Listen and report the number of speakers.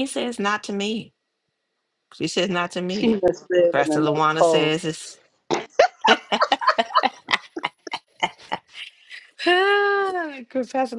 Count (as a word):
two